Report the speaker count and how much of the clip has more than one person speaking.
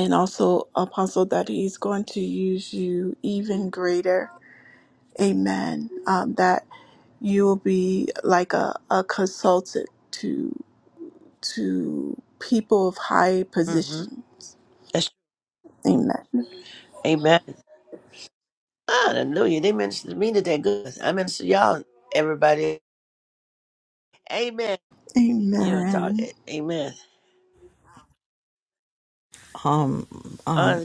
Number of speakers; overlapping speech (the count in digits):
3, about 4%